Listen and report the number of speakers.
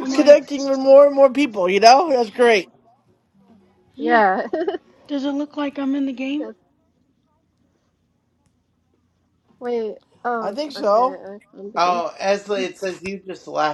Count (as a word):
four